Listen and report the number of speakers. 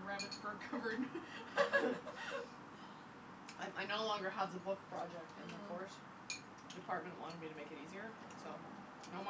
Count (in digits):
2